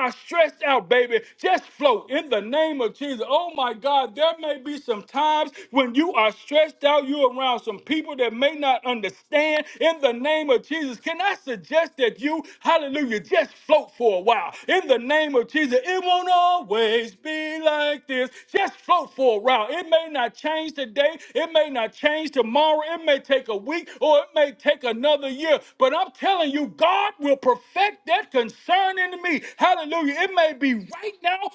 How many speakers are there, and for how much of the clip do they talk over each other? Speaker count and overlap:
1, no overlap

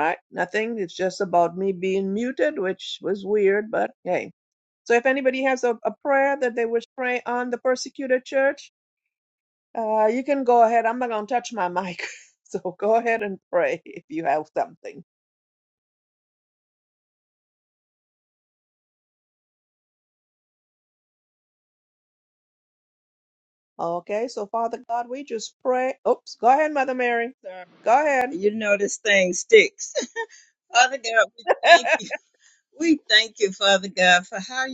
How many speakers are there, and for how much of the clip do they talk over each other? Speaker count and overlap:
2, under 1%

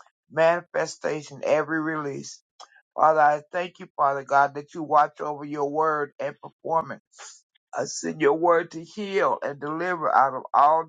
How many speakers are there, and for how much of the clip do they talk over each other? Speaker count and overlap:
1, no overlap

